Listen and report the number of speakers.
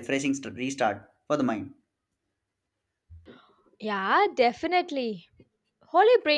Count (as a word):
two